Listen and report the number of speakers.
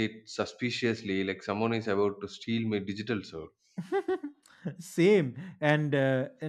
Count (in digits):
2